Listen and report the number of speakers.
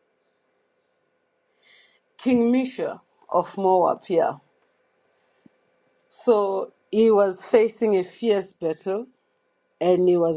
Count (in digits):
1